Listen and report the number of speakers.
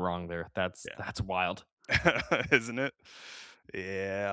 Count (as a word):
two